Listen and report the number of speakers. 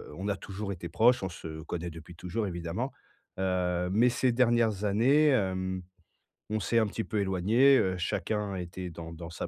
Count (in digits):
1